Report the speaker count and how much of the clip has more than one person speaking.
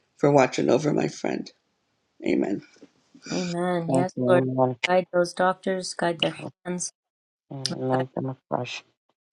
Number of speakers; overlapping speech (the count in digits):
3, about 7%